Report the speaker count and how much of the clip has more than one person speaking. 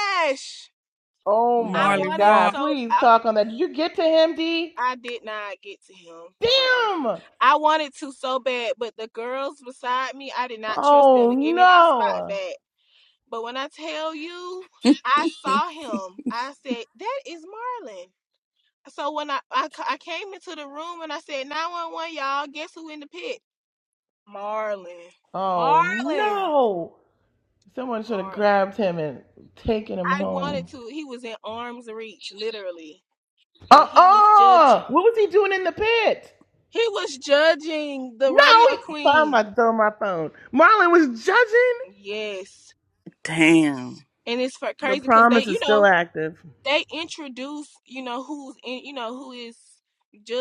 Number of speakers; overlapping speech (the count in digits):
3, about 17%